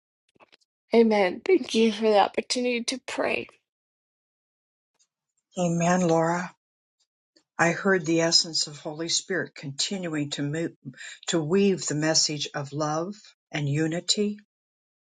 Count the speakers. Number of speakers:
two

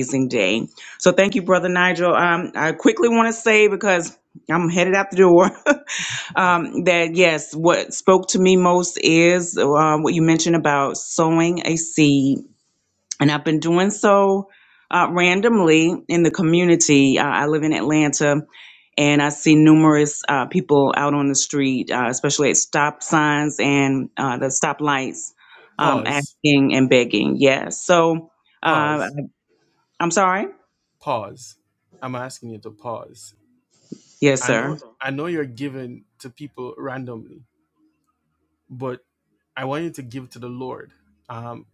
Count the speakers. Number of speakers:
two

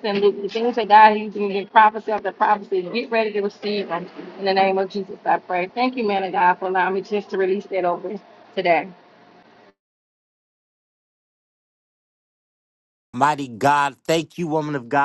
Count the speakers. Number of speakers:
two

